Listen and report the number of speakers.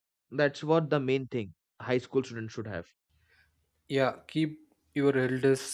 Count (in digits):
2